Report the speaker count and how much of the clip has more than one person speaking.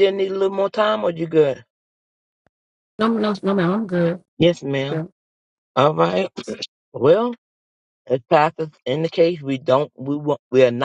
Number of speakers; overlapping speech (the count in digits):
2, about 1%